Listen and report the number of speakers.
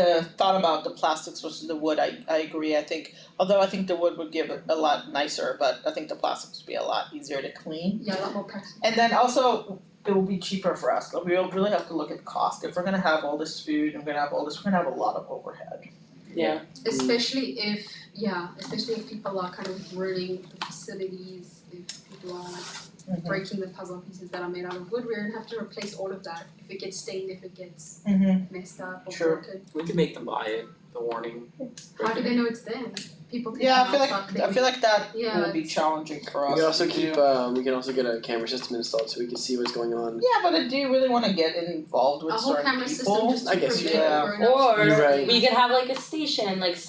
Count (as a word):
five